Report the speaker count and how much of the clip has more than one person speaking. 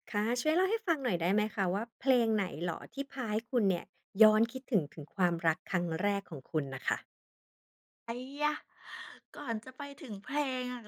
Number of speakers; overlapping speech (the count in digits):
2, no overlap